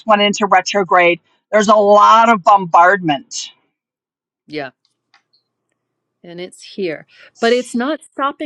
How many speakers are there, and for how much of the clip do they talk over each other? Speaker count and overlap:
2, no overlap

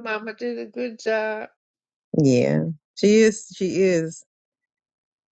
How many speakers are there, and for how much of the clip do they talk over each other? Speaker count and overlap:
2, no overlap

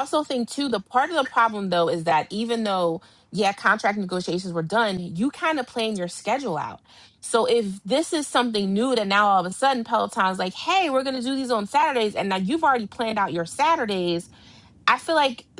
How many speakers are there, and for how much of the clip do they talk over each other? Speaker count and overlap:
1, no overlap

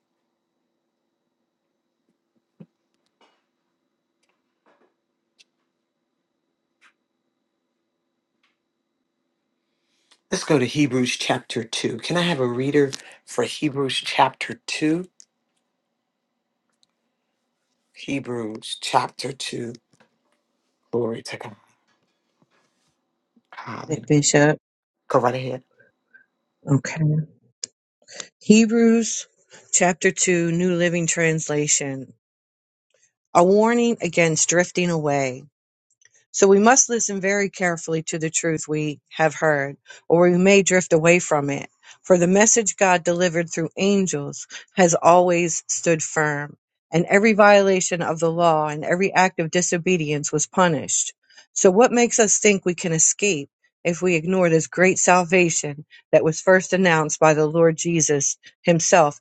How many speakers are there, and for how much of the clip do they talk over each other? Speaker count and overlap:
2, under 1%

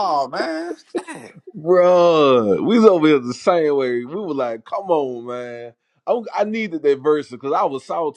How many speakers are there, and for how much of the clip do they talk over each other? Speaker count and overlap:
2, no overlap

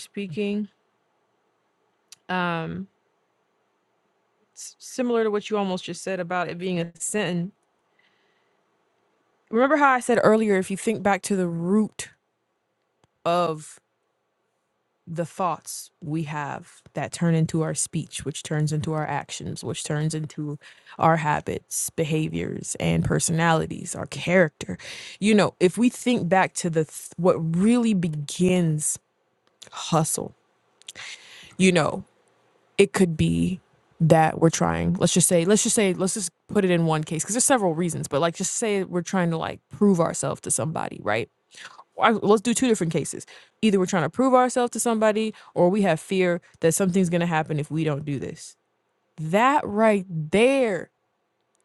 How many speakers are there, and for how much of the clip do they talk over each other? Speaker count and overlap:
1, no overlap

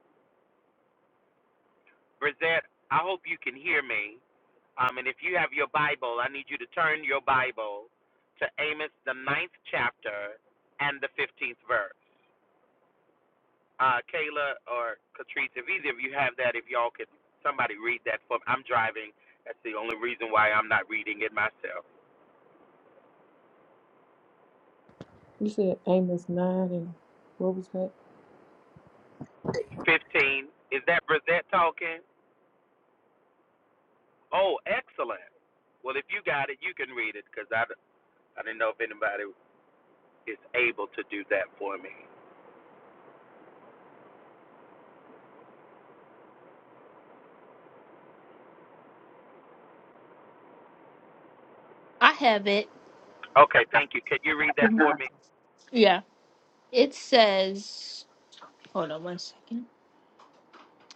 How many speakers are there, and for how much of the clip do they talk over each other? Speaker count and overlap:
3, about 1%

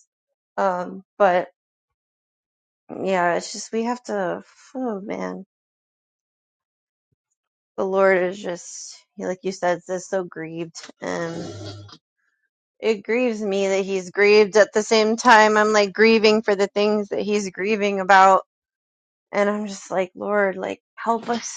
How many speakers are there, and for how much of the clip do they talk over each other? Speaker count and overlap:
1, no overlap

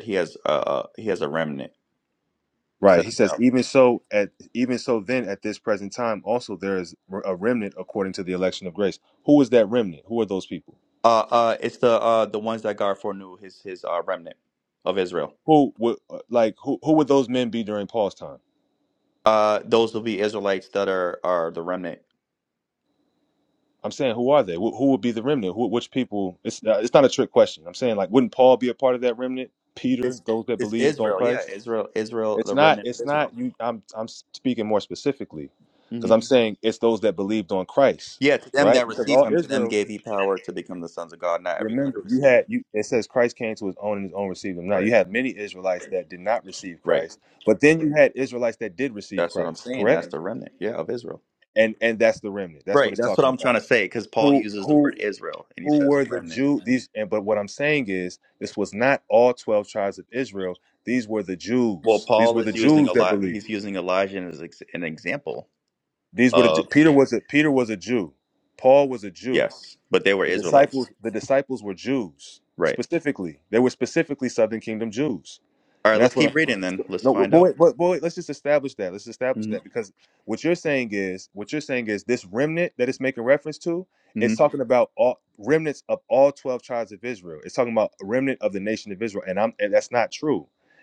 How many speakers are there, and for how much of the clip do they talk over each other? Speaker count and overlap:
2, about 13%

